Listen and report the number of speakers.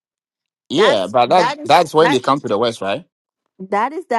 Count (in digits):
2